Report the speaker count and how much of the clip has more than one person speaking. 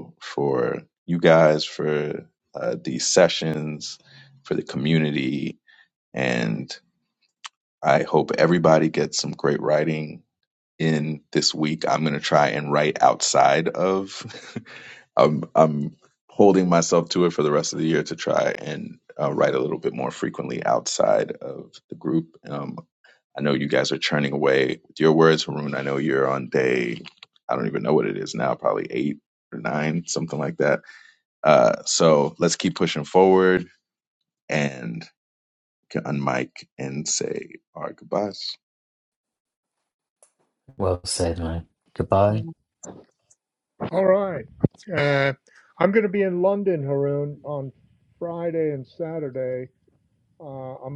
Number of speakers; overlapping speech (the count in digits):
3, no overlap